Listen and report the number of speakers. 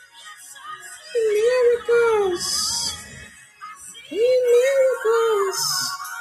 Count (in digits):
1